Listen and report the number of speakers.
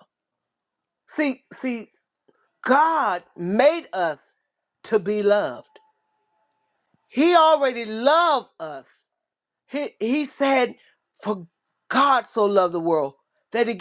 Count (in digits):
1